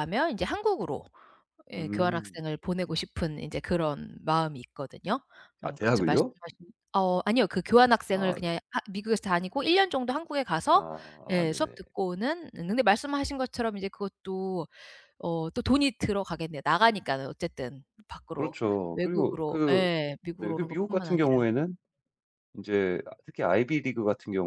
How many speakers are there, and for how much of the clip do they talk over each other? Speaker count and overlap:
2, about 18%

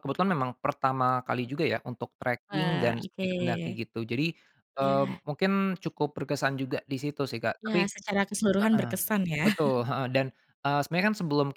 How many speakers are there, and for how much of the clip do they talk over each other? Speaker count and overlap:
2, about 16%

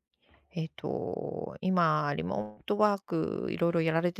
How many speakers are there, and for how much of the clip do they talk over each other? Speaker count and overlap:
1, no overlap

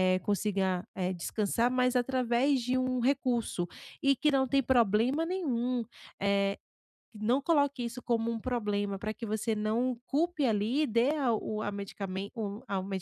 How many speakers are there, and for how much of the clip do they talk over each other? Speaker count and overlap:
1, no overlap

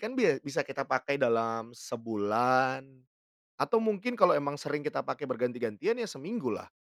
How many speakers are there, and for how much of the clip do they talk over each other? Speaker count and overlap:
1, no overlap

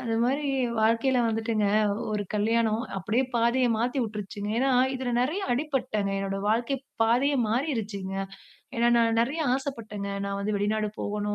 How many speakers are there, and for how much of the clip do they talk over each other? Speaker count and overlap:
1, no overlap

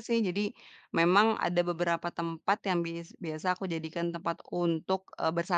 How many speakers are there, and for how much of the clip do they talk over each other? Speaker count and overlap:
1, no overlap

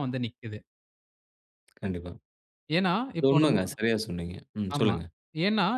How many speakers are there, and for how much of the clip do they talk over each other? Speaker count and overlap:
2, about 12%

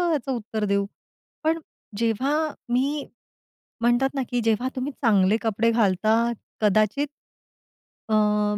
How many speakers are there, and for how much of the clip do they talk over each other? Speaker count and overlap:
1, no overlap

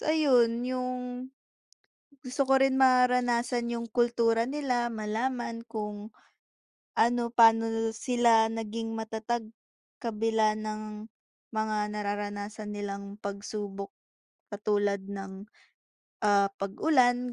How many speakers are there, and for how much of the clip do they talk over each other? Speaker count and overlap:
1, no overlap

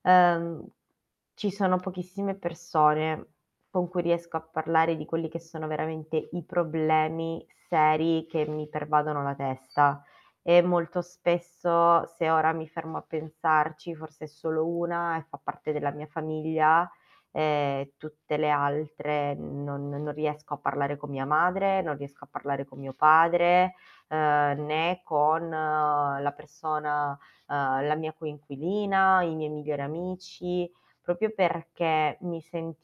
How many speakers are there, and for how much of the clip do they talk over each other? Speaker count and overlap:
1, no overlap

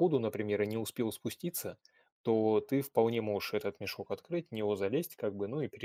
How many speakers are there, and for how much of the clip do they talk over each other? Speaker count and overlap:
1, no overlap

